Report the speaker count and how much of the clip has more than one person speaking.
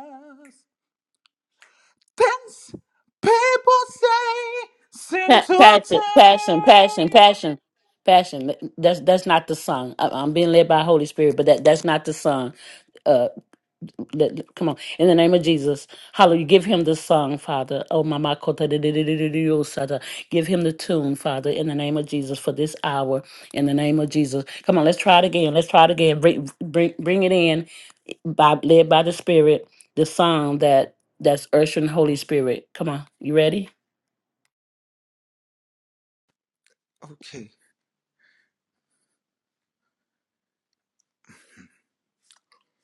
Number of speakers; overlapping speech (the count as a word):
two, about 5%